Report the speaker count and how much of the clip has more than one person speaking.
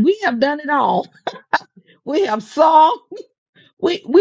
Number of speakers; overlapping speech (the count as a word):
one, no overlap